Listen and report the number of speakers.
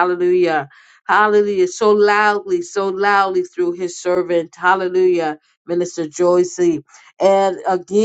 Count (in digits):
1